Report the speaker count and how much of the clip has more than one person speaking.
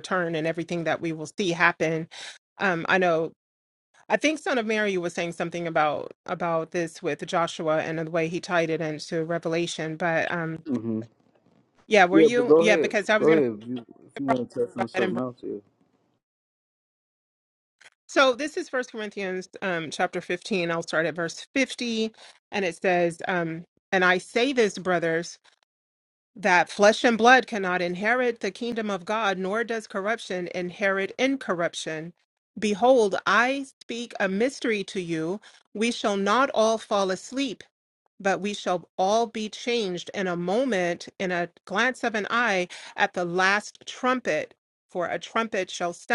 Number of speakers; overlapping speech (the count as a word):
two, about 4%